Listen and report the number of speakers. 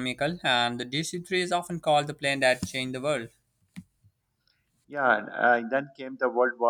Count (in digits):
2